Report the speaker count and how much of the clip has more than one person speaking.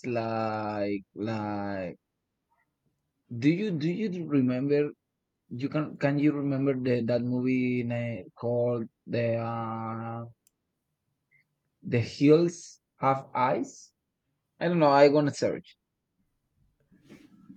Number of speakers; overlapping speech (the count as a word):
one, no overlap